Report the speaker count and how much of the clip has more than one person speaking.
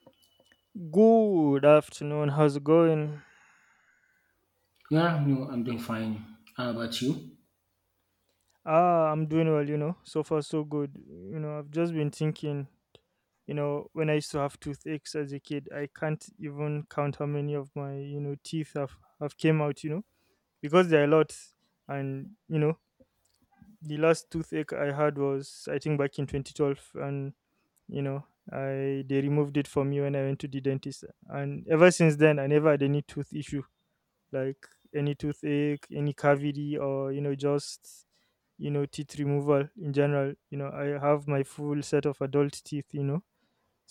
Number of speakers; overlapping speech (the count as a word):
two, no overlap